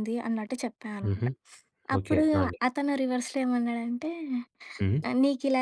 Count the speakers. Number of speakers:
two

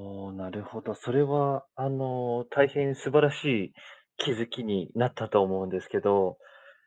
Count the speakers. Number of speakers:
one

